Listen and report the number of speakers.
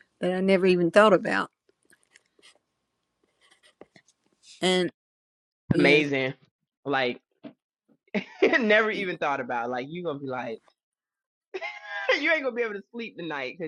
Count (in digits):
2